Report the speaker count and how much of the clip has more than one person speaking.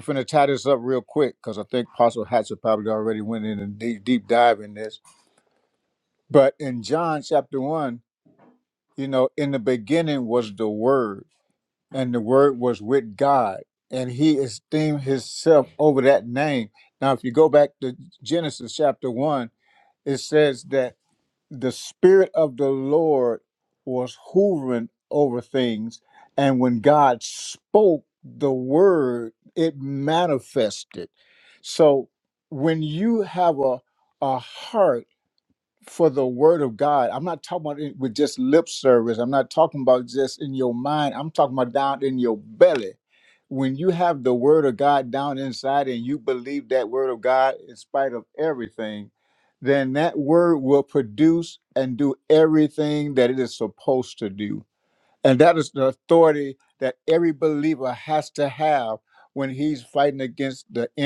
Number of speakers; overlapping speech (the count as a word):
one, no overlap